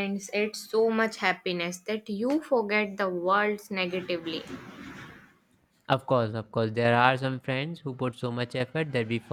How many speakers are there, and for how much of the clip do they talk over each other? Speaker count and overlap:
2, no overlap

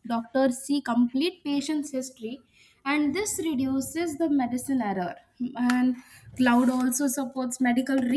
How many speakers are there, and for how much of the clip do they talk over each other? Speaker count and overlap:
1, no overlap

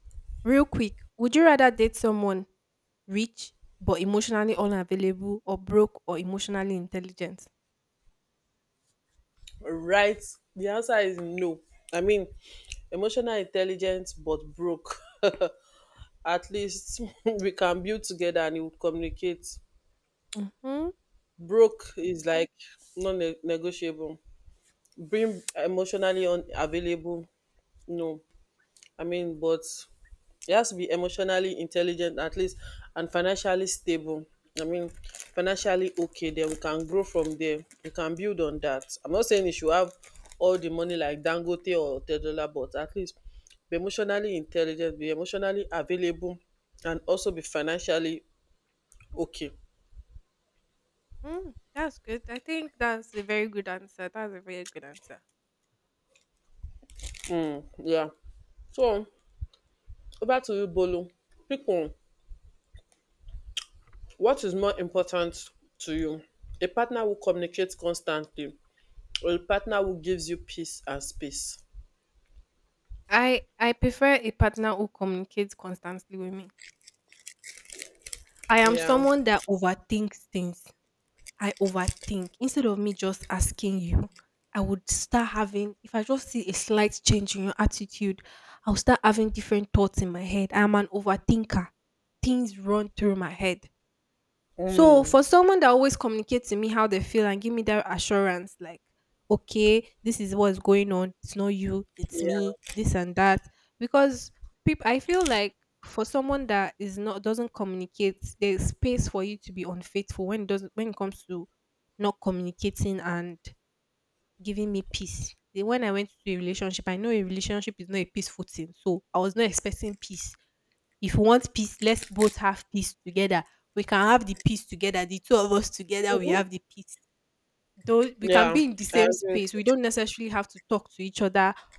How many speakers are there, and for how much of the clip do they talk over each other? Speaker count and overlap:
2, about 2%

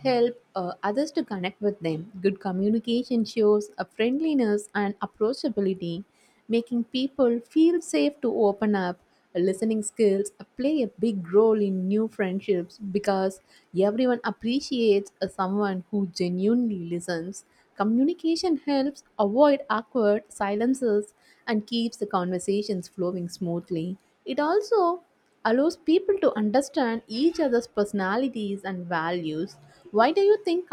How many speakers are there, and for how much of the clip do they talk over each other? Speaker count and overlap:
1, no overlap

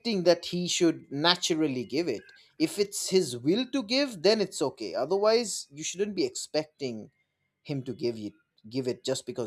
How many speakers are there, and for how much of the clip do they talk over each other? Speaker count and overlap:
1, no overlap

